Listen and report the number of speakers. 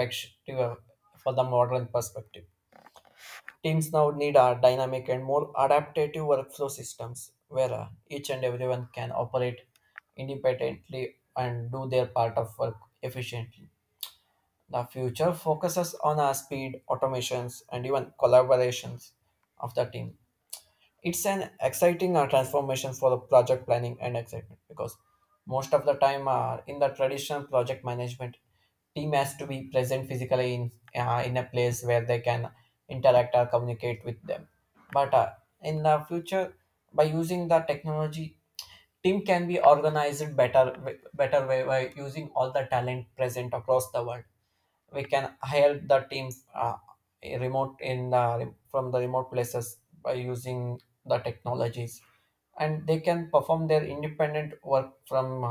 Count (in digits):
1